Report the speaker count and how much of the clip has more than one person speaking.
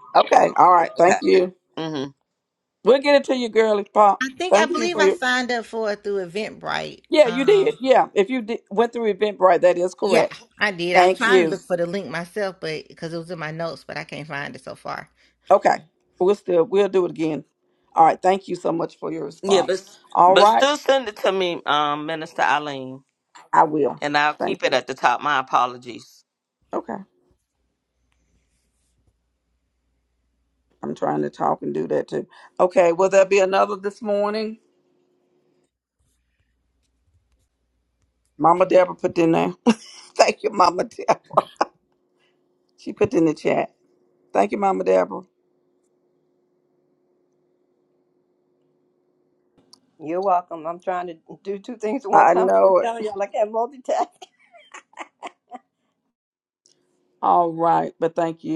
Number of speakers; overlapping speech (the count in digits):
4, about 7%